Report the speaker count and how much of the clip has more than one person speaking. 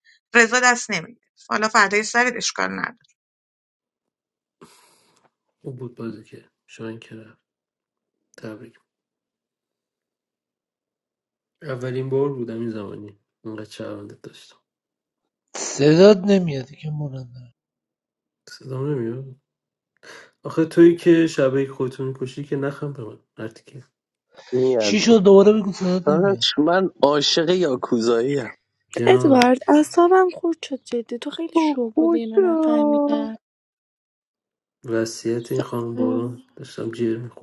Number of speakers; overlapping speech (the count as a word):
five, about 7%